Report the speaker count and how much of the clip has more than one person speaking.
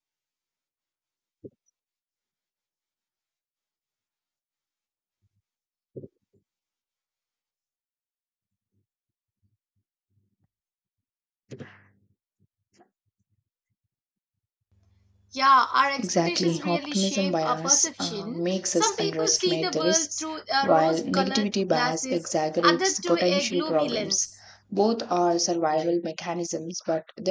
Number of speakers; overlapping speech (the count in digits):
2, about 25%